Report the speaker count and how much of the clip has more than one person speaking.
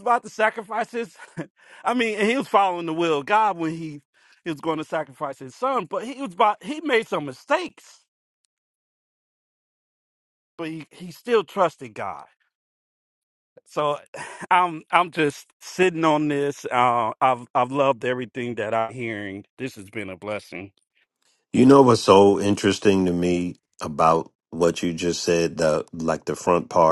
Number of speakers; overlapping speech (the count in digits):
2, no overlap